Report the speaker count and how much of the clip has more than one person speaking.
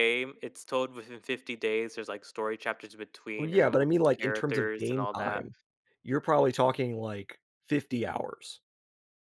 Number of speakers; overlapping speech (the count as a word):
two, about 22%